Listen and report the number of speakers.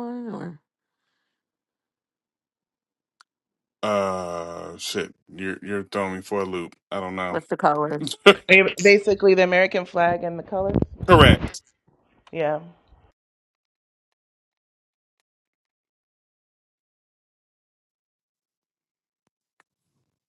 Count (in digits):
3